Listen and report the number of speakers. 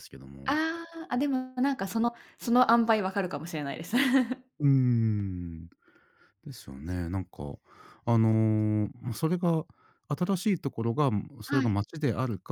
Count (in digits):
2